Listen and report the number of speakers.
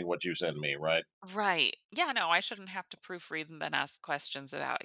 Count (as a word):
two